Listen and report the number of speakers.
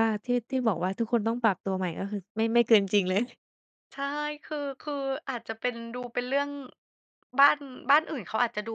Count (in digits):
2